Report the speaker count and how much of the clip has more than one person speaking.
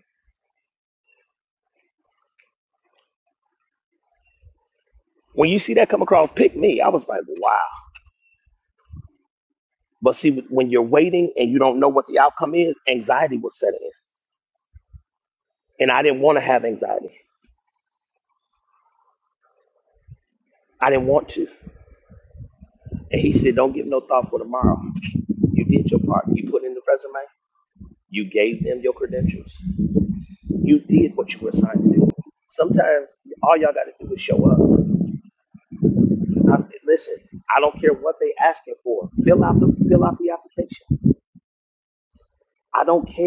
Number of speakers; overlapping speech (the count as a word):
one, no overlap